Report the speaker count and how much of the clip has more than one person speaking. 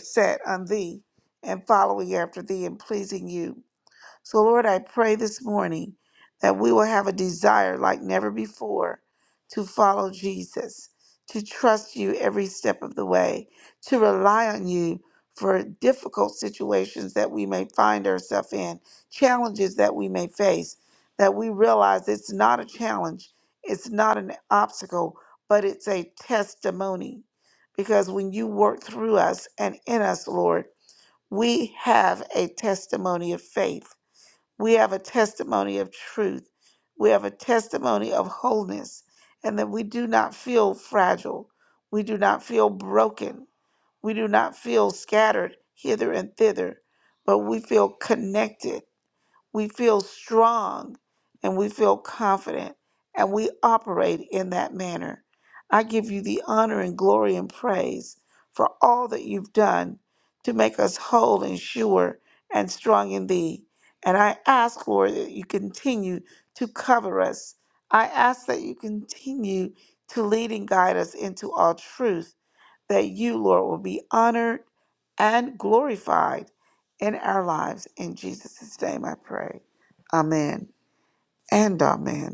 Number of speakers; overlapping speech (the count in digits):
1, no overlap